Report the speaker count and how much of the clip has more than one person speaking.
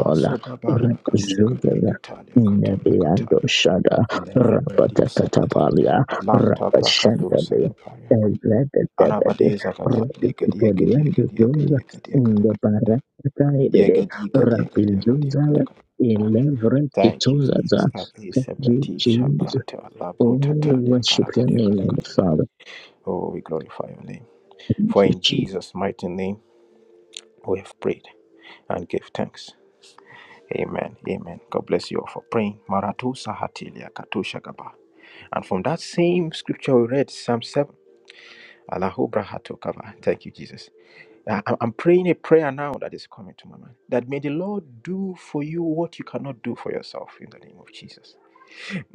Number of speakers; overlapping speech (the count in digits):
2, about 24%